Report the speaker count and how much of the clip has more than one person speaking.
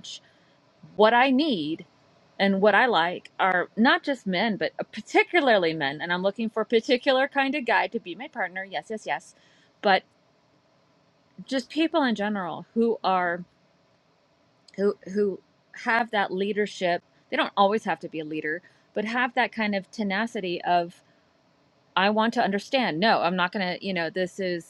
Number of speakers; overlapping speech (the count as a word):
one, no overlap